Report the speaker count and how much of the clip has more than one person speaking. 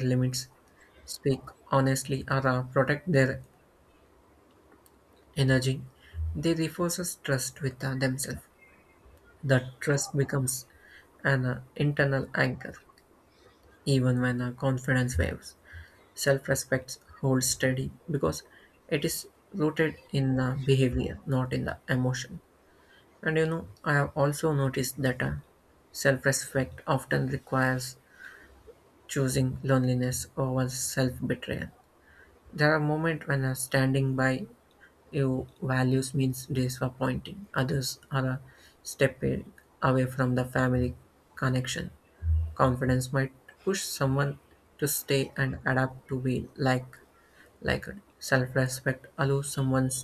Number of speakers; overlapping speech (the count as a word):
one, no overlap